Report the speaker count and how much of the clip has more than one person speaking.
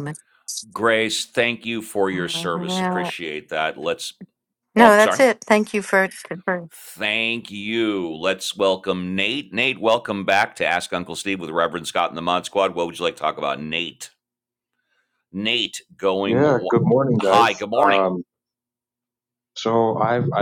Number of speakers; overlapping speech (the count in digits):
3, about 12%